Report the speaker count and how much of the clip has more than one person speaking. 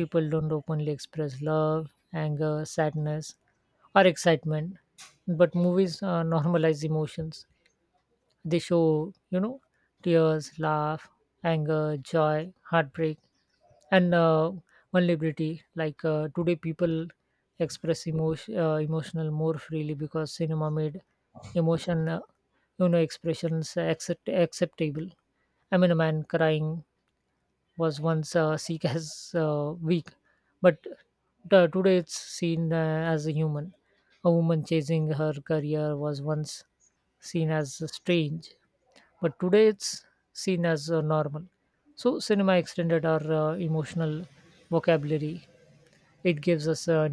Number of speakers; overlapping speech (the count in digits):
1, no overlap